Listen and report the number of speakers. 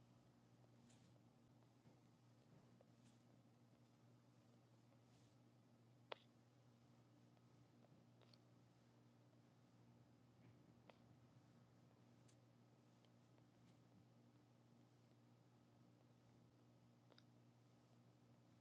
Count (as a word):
zero